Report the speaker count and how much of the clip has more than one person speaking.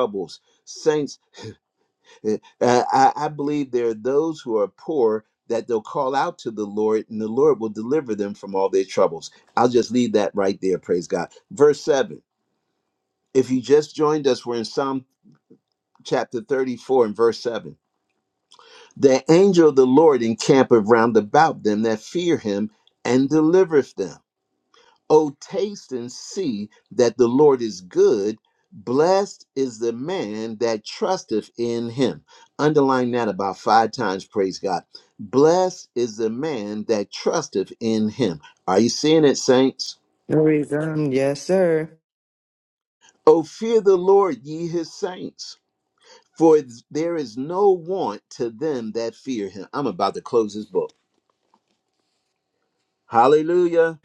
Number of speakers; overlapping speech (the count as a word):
two, no overlap